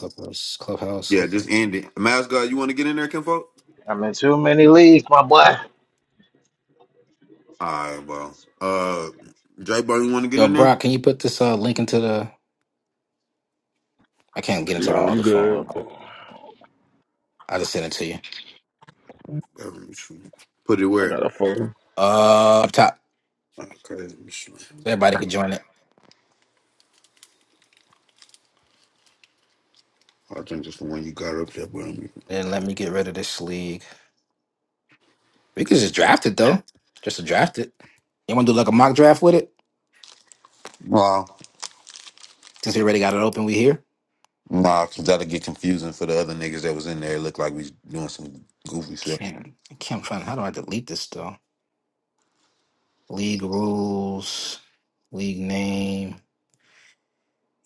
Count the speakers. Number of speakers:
four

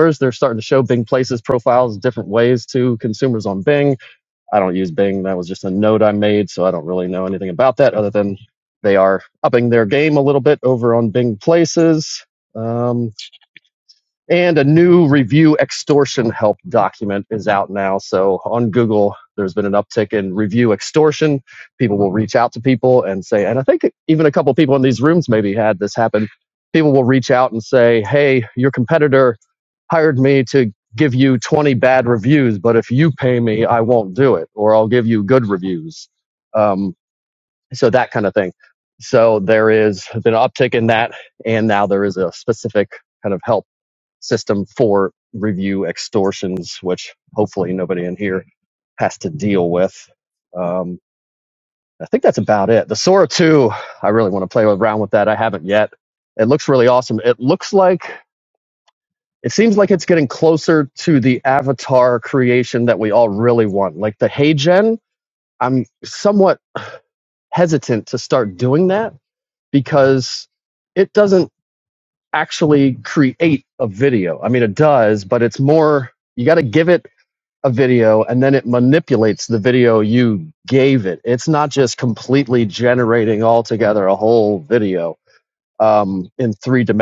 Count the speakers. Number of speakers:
one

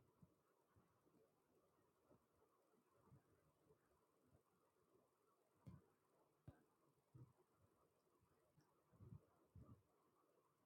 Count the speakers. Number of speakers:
zero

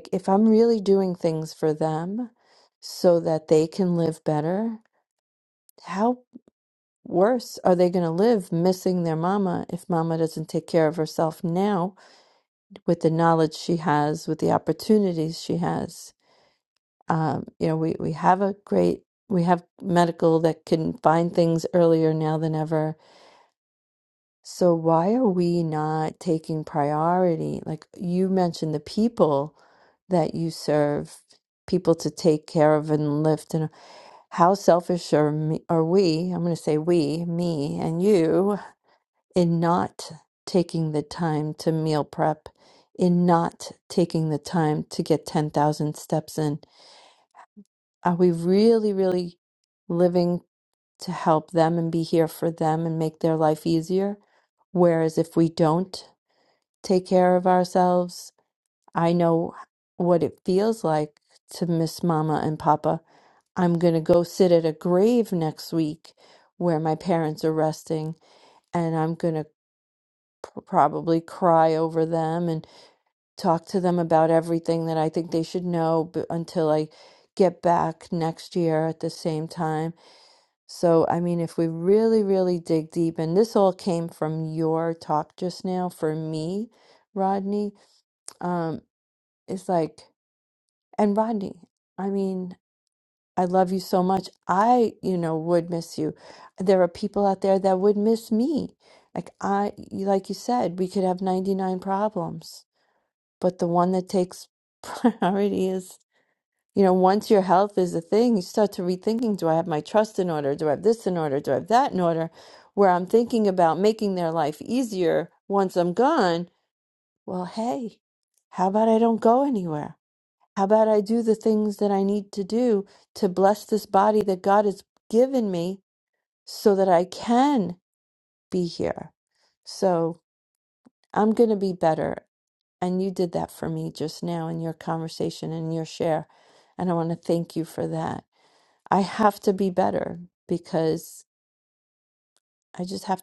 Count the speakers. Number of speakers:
one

